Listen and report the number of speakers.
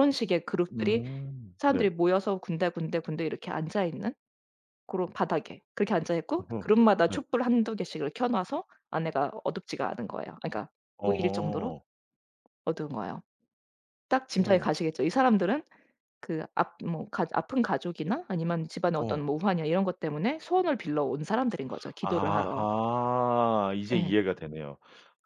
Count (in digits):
2